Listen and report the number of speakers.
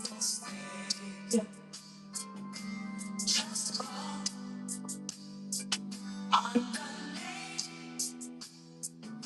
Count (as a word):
zero